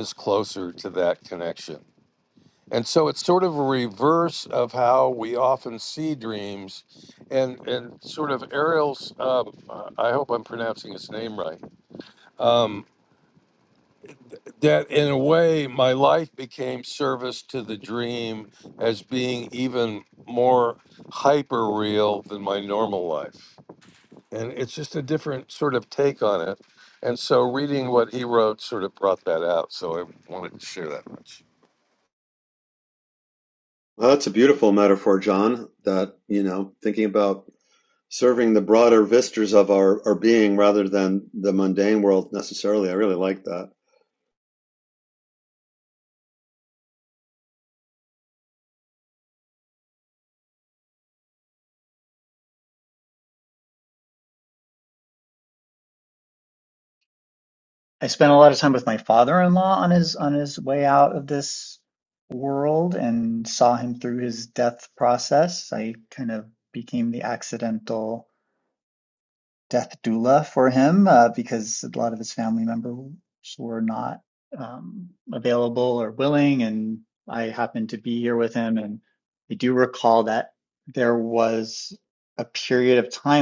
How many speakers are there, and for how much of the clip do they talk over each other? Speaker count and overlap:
3, no overlap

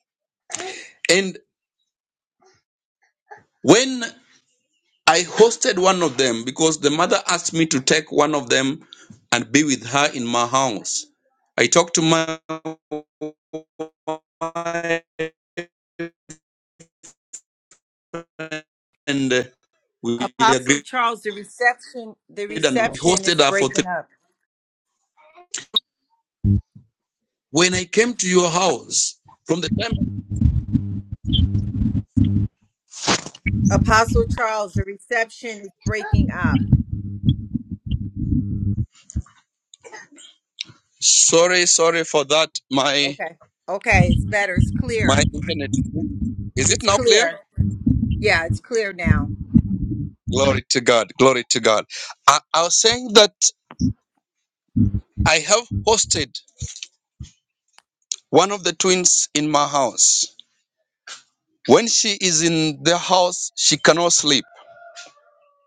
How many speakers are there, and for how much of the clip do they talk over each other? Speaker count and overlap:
2, about 4%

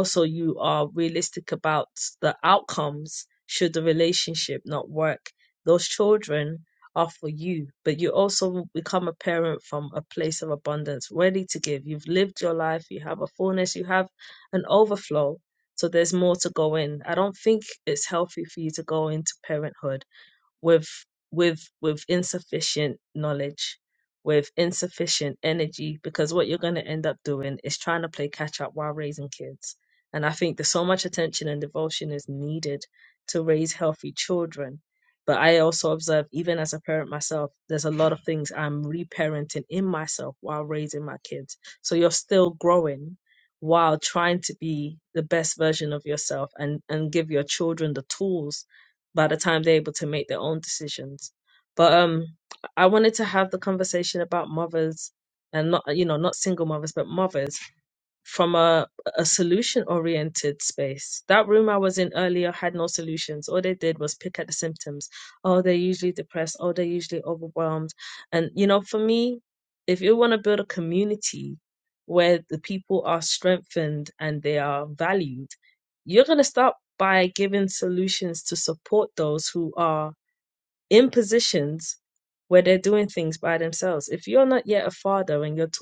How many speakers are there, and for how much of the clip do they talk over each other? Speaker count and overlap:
1, no overlap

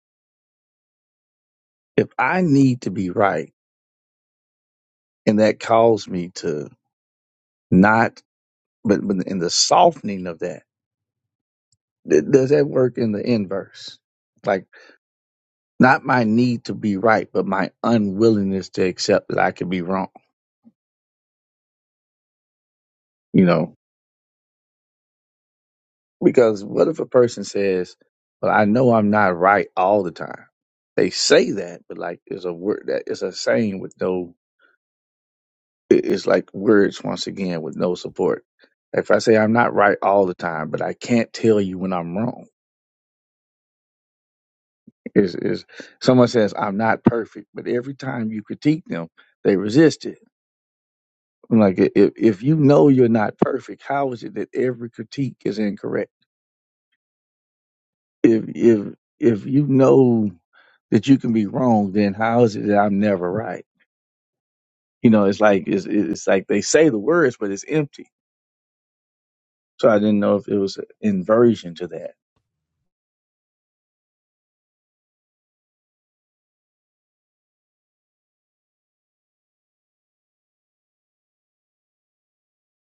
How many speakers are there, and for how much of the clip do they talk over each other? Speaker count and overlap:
1, no overlap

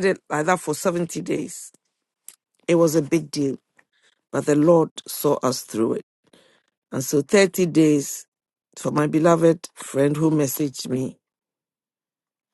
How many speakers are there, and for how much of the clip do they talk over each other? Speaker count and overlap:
1, no overlap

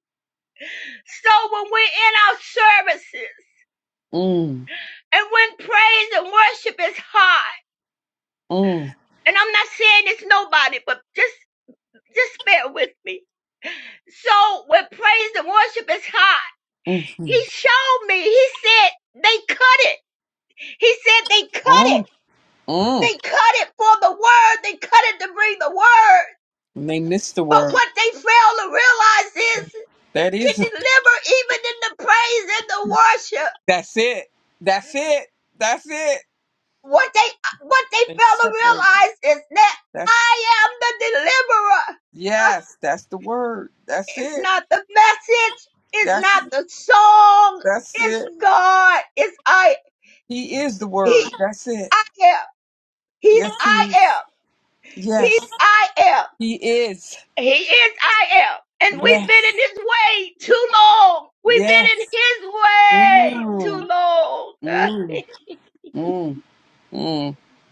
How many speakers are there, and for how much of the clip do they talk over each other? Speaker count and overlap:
2, about 10%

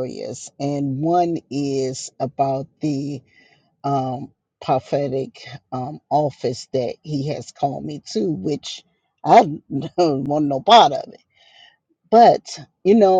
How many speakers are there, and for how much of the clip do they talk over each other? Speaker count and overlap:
1, no overlap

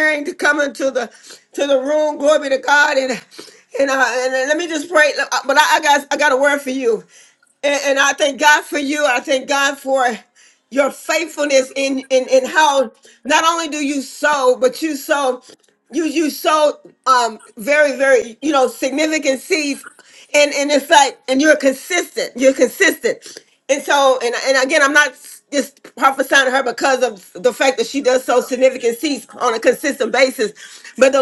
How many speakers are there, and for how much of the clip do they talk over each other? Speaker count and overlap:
1, no overlap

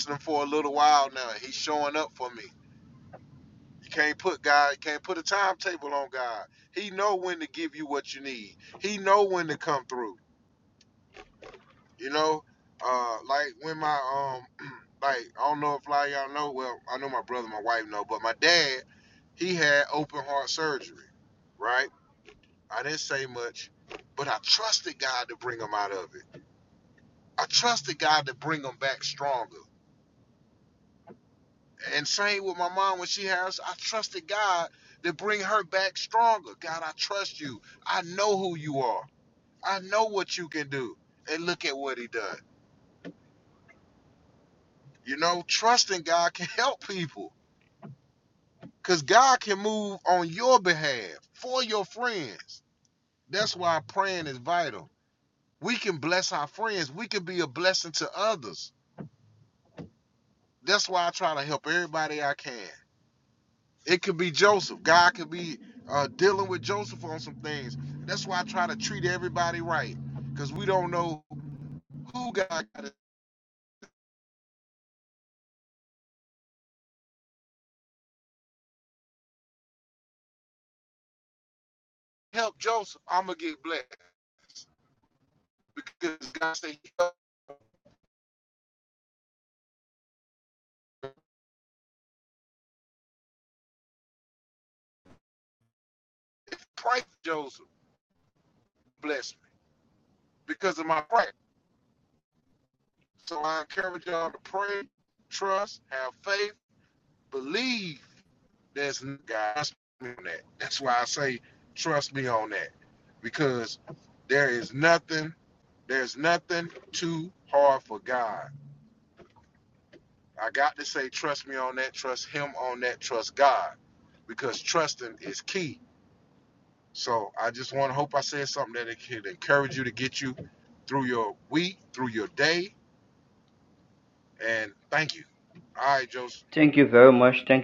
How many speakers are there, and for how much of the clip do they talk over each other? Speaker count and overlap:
2, no overlap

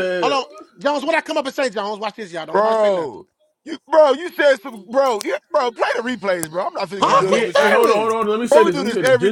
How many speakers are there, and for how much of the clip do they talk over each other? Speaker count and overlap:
3, about 28%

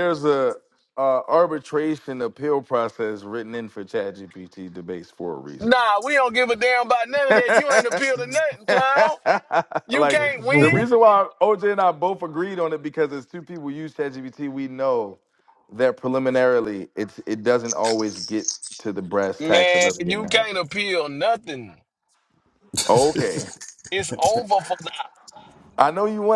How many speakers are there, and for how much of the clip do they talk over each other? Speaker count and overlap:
2, about 8%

